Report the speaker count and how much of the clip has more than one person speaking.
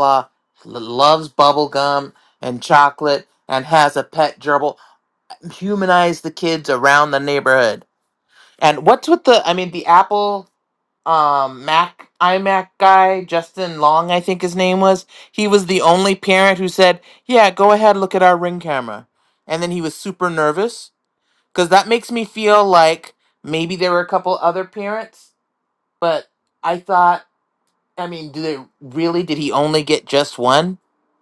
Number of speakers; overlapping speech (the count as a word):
one, no overlap